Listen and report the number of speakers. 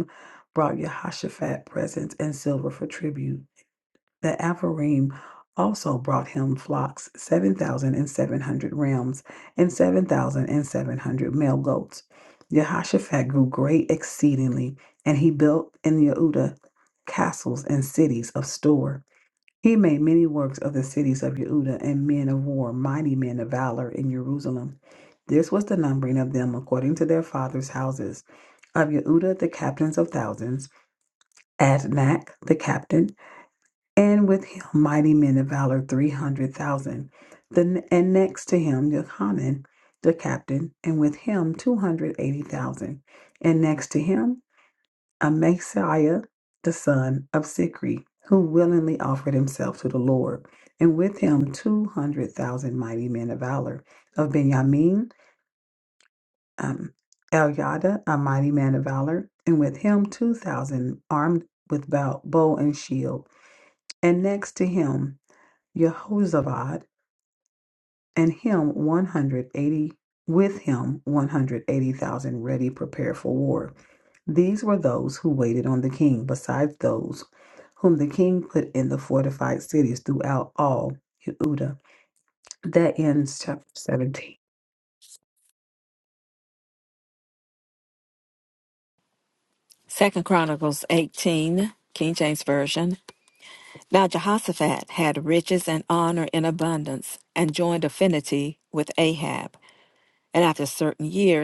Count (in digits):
2